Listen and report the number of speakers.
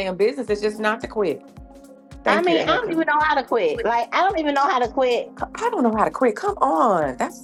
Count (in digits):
2